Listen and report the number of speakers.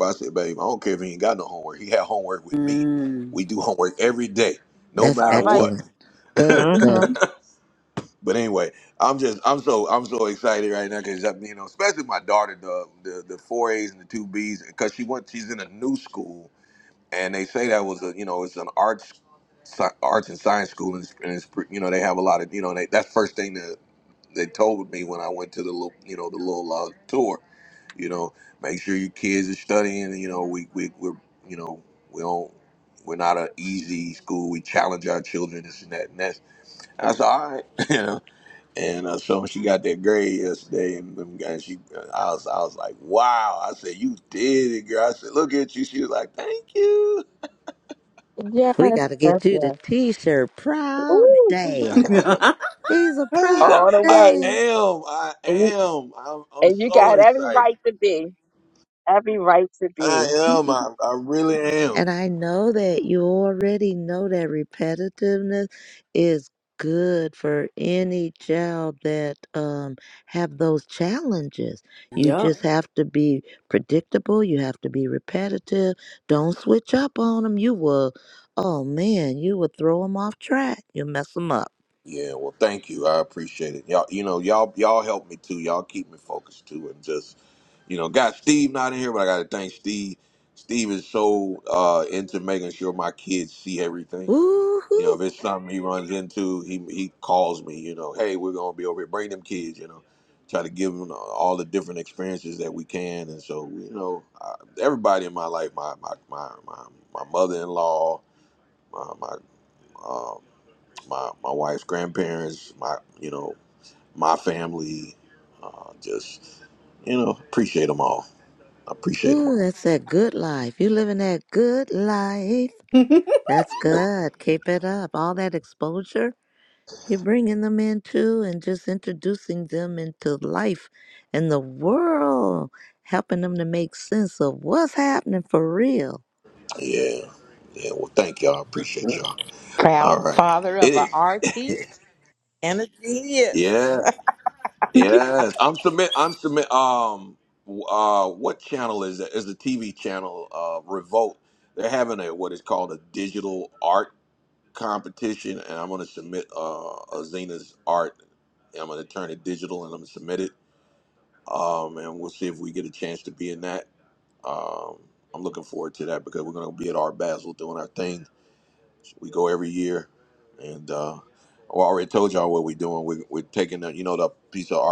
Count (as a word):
five